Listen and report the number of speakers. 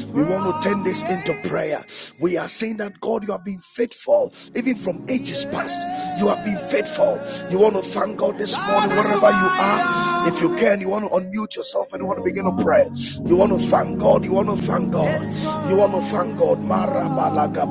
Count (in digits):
1